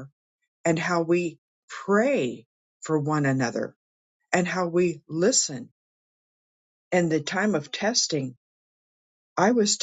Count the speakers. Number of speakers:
1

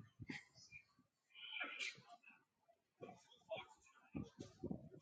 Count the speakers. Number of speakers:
0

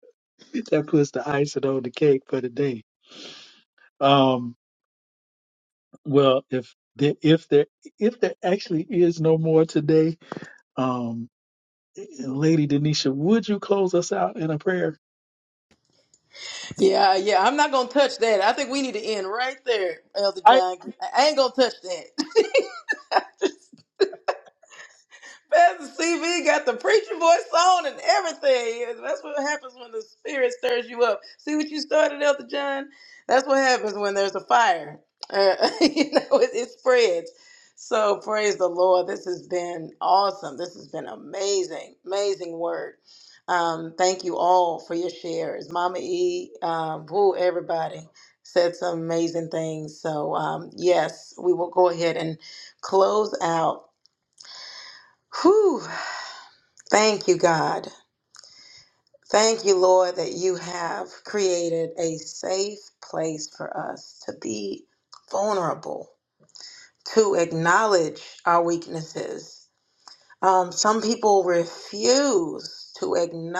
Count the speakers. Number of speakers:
2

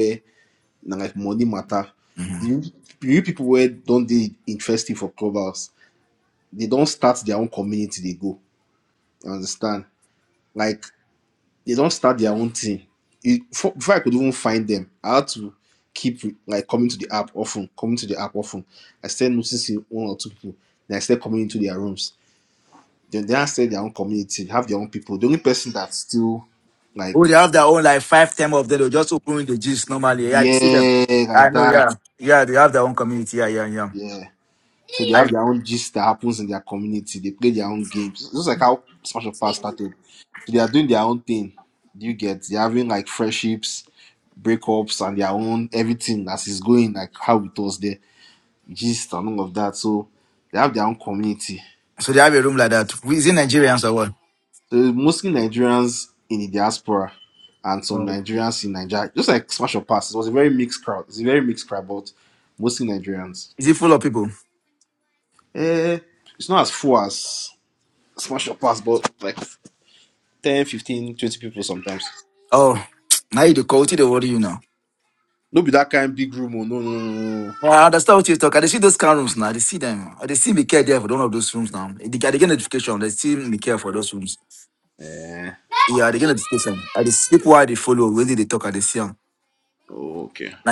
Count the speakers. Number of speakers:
2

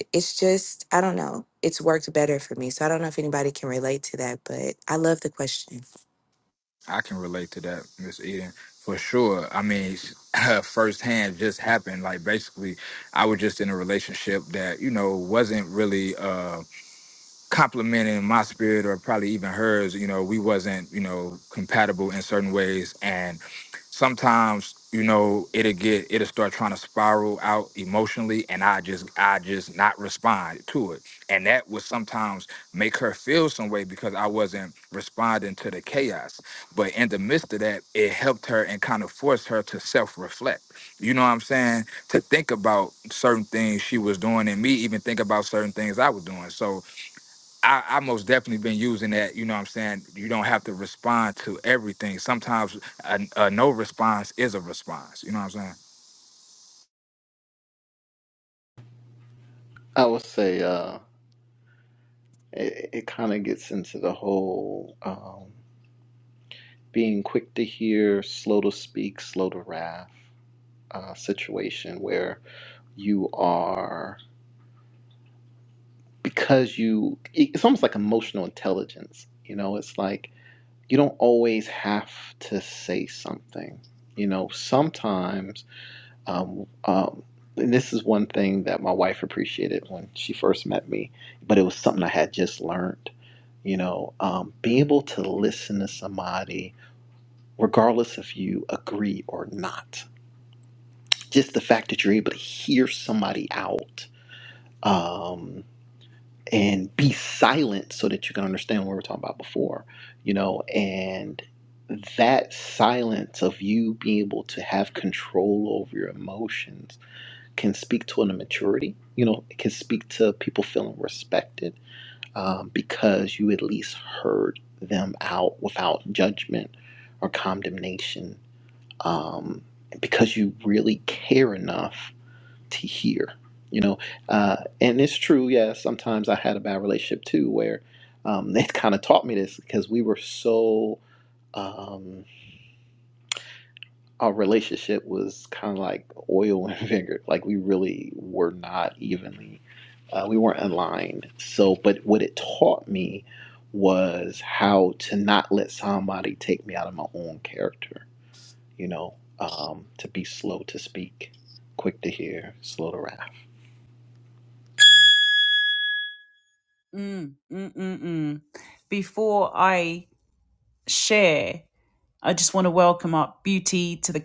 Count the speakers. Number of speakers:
4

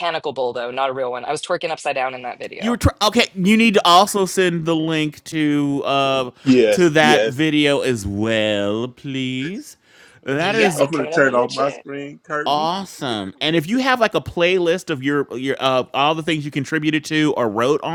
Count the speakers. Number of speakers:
3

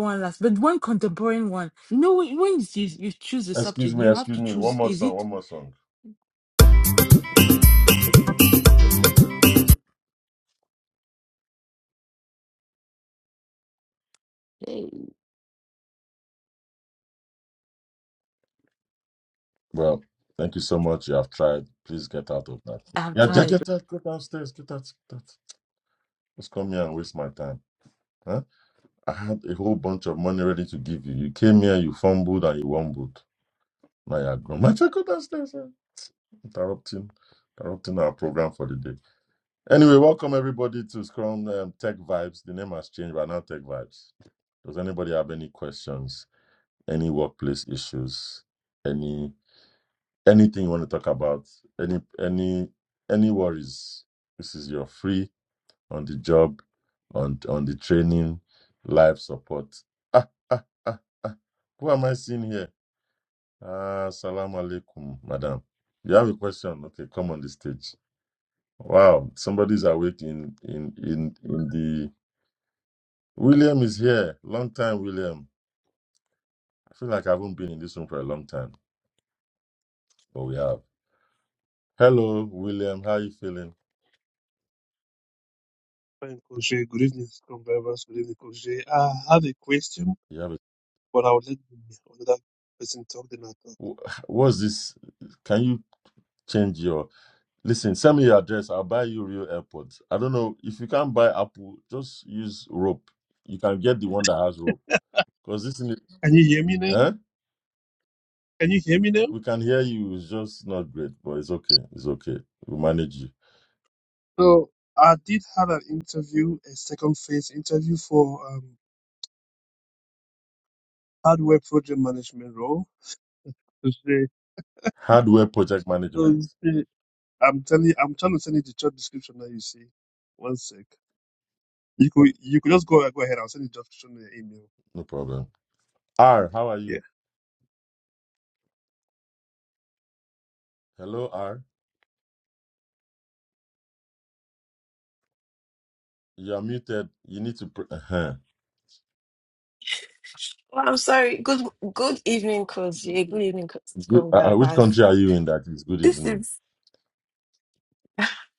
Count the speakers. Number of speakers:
4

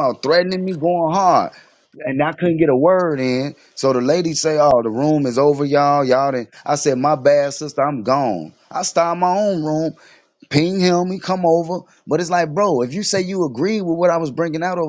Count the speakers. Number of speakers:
1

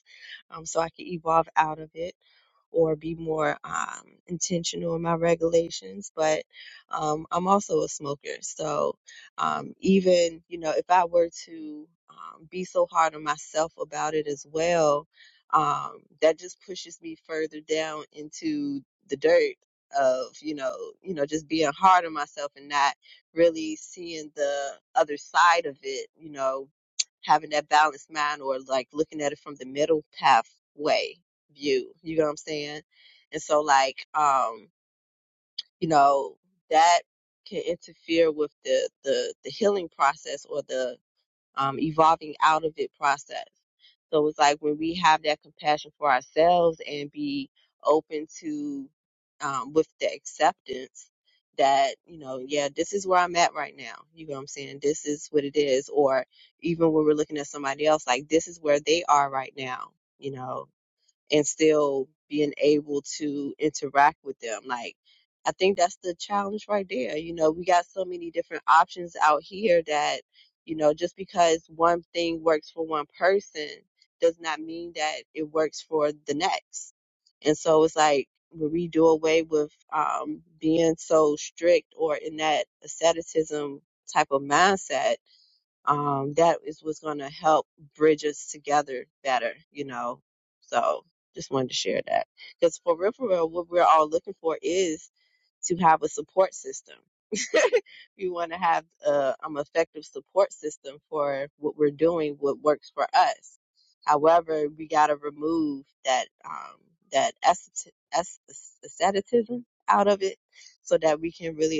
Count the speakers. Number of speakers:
1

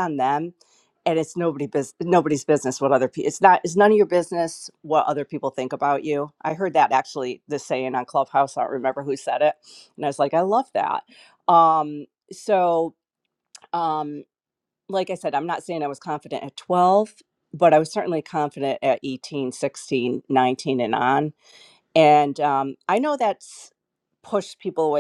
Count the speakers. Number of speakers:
1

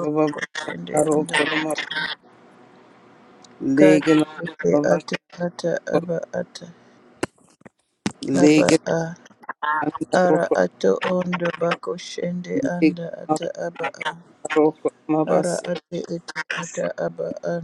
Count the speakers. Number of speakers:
2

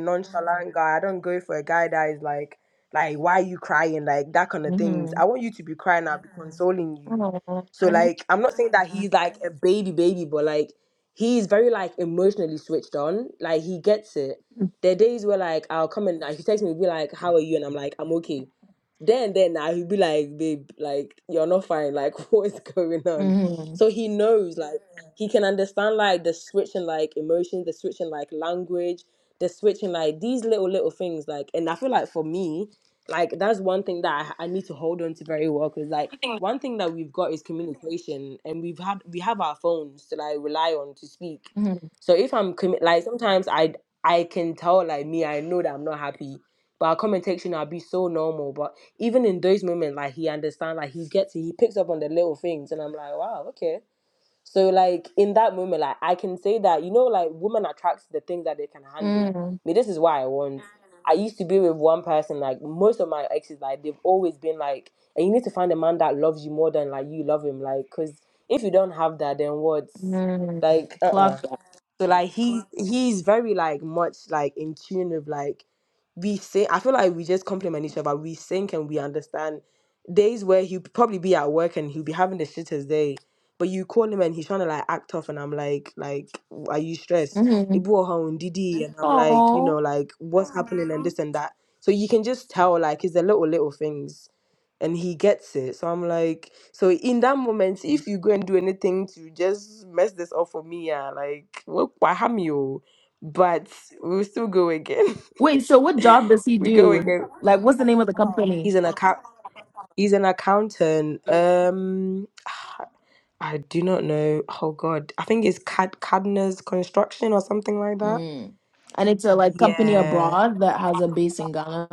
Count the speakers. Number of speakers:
2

